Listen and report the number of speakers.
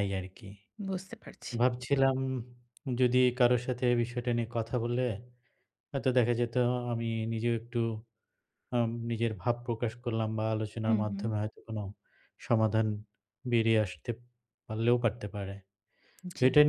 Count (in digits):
2